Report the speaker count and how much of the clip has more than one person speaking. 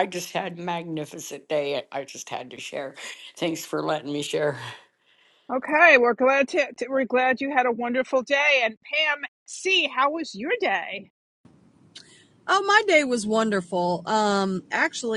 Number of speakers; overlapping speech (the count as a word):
three, no overlap